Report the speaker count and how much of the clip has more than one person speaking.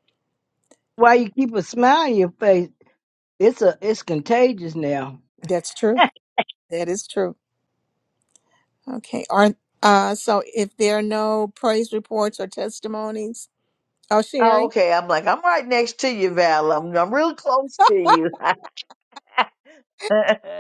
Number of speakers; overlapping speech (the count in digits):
3, about 1%